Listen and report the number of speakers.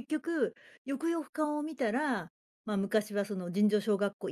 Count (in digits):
1